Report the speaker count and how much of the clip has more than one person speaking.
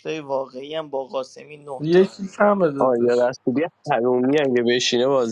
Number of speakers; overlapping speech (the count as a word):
three, about 12%